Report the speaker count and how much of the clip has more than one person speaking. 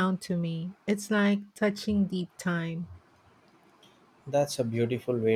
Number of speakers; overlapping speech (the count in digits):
2, no overlap